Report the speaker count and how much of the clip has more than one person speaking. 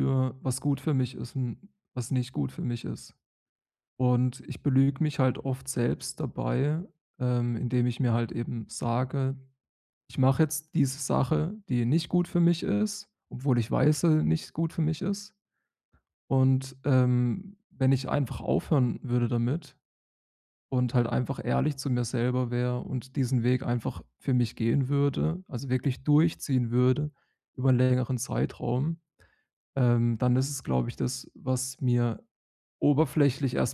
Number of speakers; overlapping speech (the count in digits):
1, no overlap